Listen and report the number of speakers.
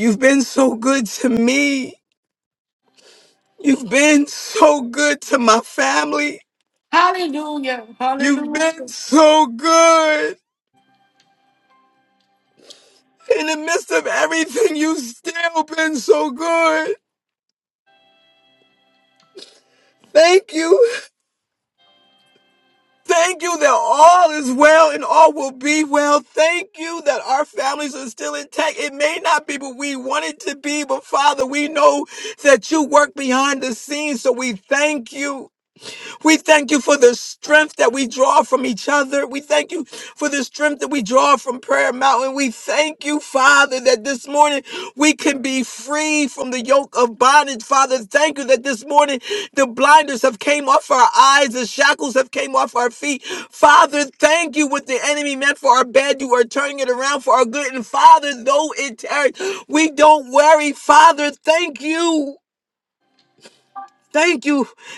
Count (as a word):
two